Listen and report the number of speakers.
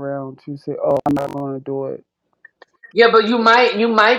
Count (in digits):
2